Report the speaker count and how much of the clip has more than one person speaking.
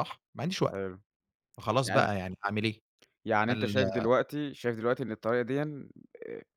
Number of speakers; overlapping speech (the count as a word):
two, about 9%